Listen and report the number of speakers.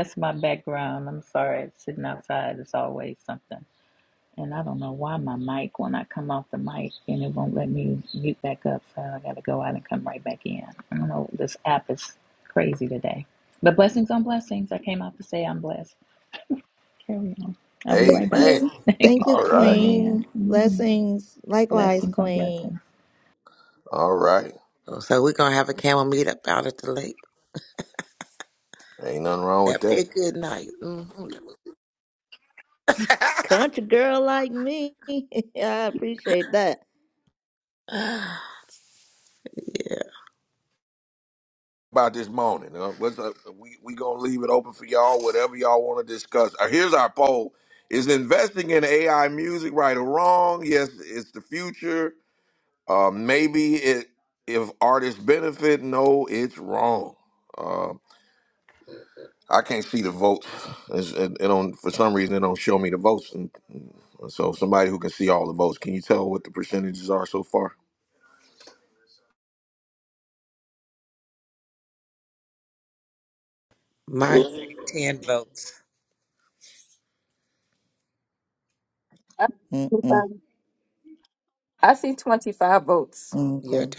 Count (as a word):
five